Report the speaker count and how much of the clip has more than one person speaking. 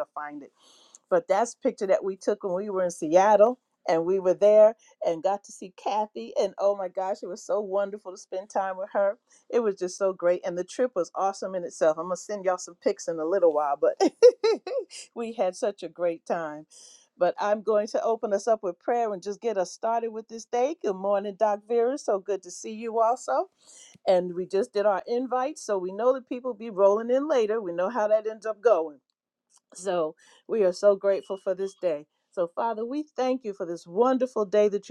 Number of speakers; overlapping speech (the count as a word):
one, no overlap